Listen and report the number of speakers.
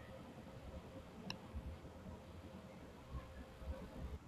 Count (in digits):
0